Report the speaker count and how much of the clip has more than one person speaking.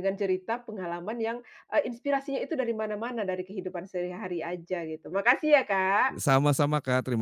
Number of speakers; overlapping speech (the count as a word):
two, about 1%